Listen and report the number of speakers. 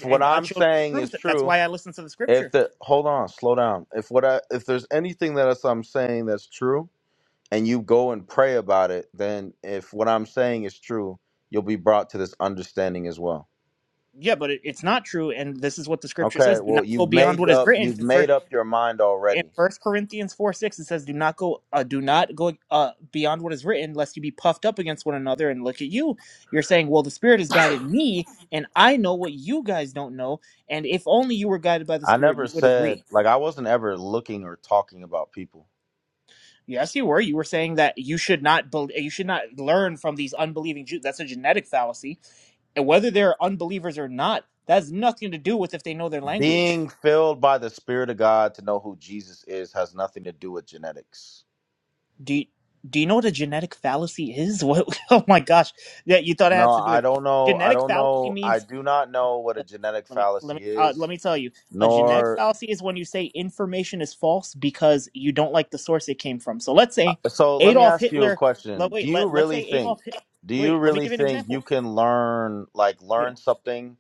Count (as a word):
two